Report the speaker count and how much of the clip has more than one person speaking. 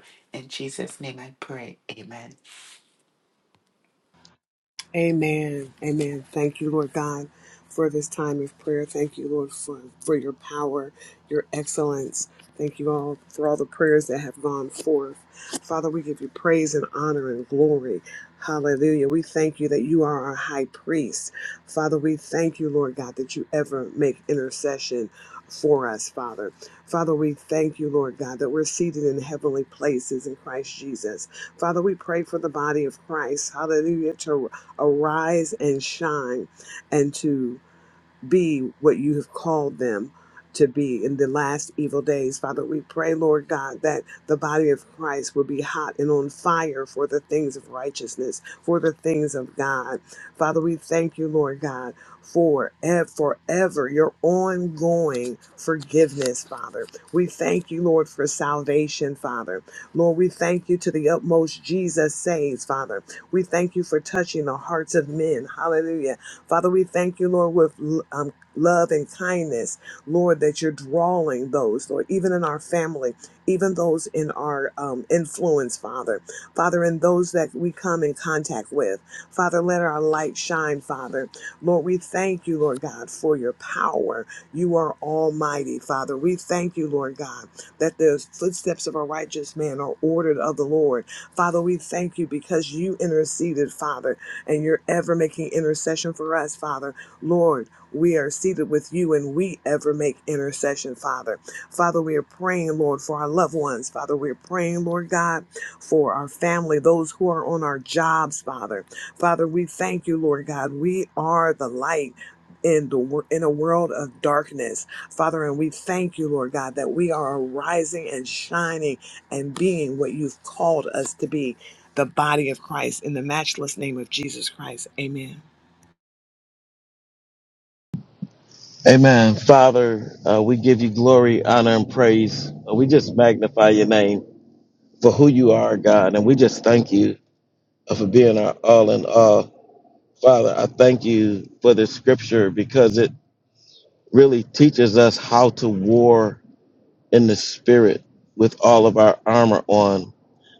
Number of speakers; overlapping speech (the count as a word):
three, no overlap